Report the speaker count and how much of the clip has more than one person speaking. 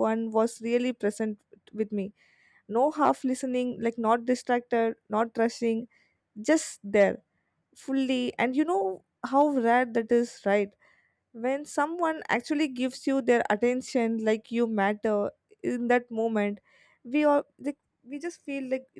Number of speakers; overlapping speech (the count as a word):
one, no overlap